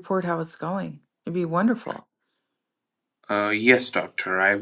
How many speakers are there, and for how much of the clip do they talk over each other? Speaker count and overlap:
2, no overlap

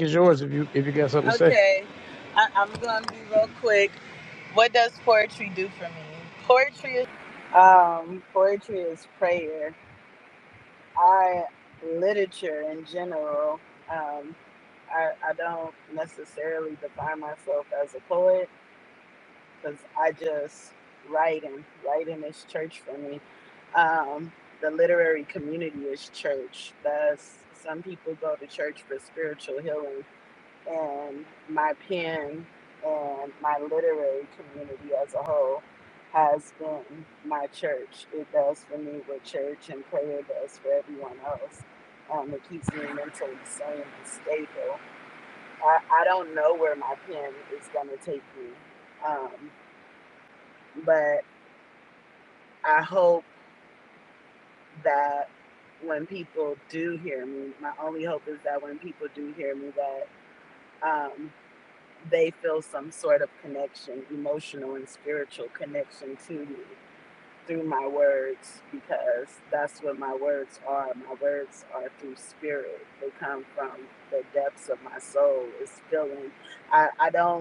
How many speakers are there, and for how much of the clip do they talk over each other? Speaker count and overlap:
2, under 1%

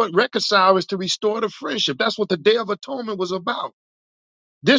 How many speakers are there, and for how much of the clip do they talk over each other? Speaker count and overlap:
1, no overlap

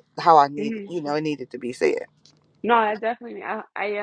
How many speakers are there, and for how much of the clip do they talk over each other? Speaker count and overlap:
2, about 8%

